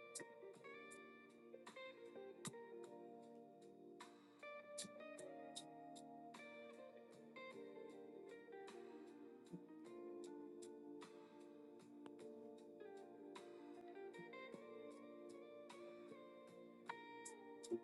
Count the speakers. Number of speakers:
0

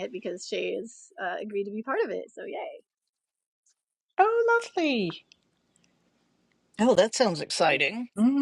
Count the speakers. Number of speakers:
3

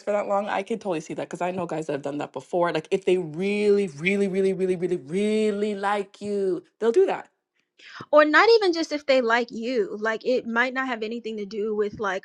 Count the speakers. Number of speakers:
2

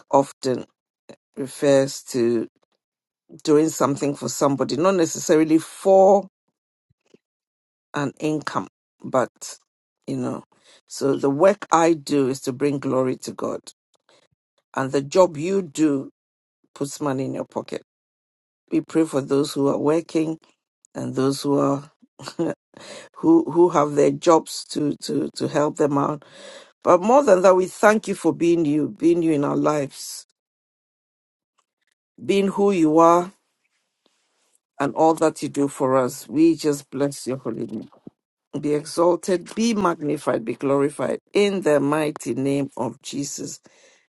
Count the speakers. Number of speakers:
1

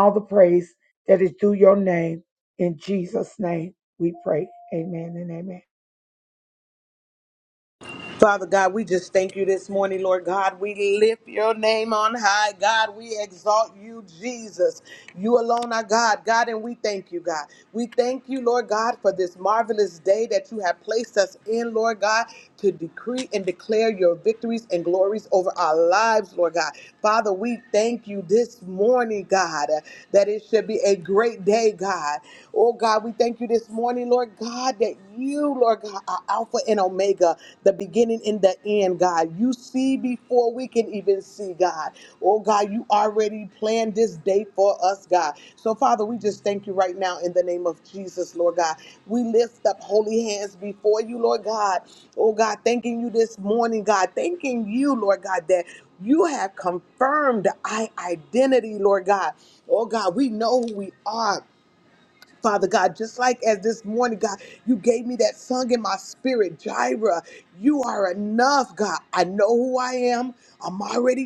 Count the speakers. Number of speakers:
2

